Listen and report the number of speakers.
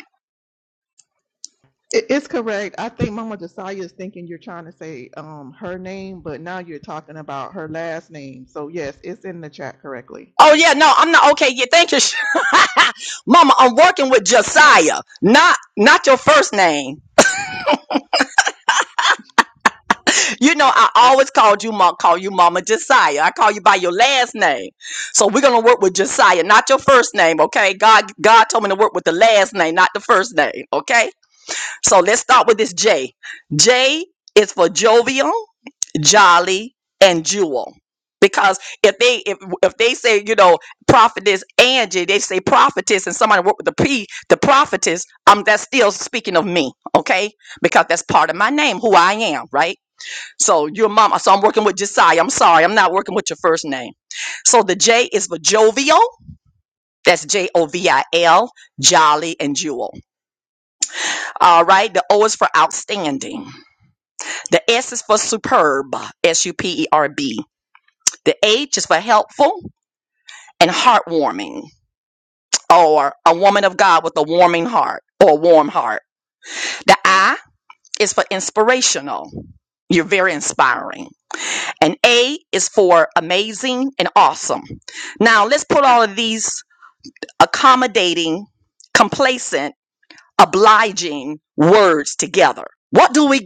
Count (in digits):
2